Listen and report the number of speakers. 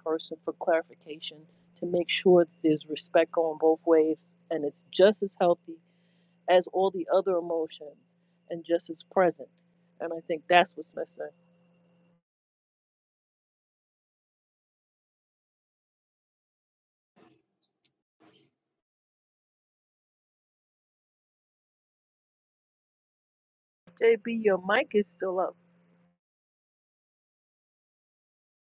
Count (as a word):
one